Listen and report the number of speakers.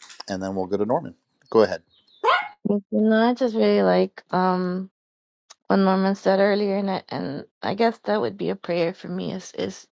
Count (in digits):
2